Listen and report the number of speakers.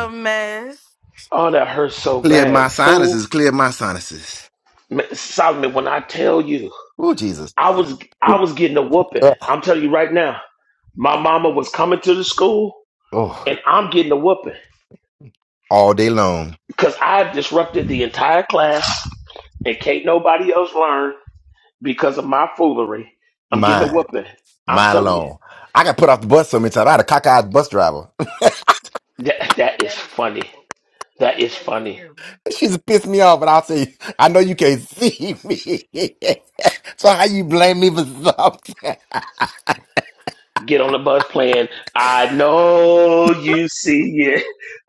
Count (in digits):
3